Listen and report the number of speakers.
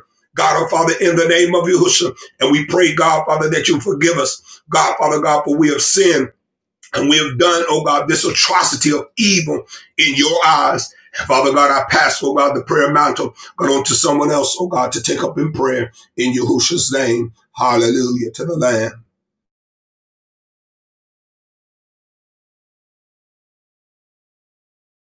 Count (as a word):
one